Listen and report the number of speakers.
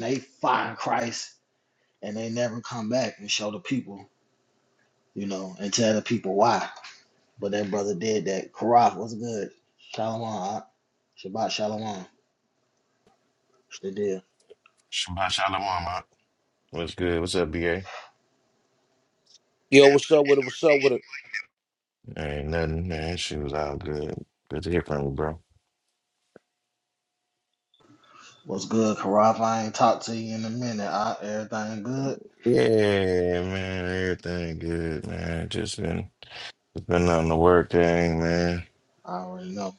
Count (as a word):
three